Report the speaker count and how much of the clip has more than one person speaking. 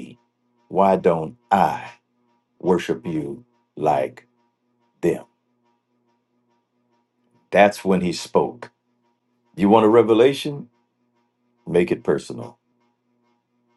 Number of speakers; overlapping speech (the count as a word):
one, no overlap